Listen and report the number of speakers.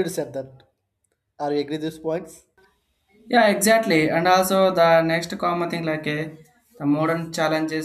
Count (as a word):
two